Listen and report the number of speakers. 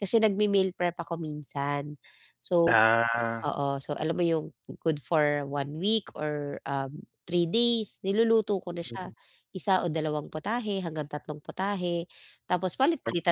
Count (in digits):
2